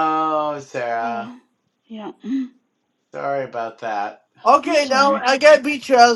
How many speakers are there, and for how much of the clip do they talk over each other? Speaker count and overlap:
3, about 15%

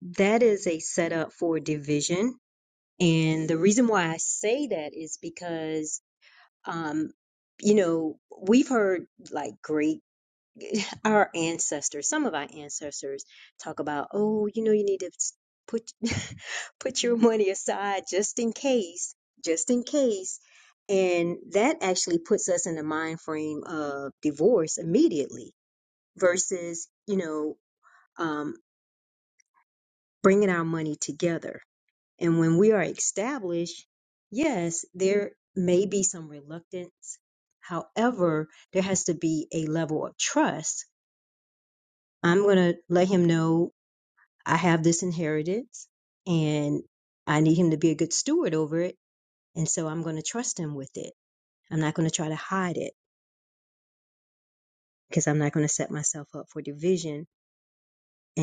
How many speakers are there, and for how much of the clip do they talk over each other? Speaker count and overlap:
1, no overlap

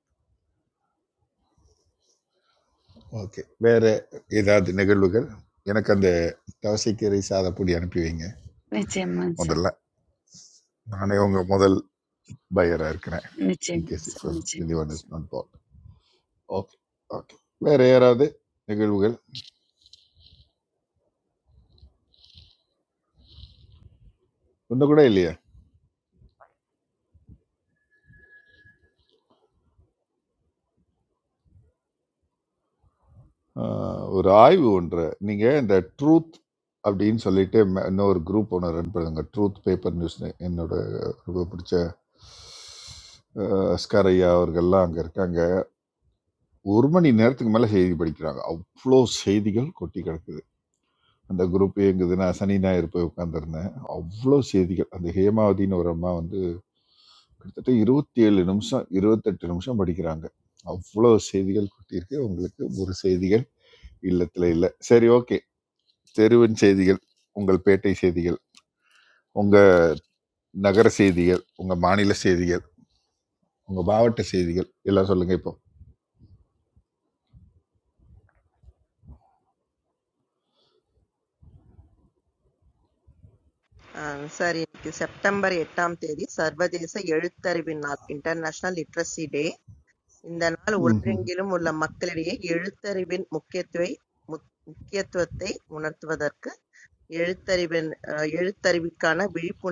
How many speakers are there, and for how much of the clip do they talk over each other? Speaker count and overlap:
3, about 1%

